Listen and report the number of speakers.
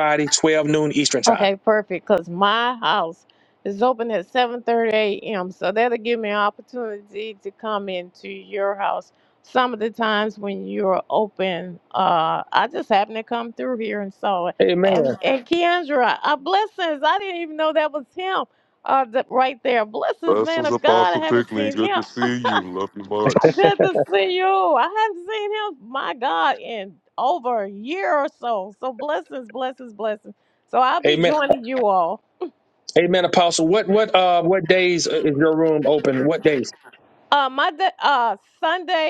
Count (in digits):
3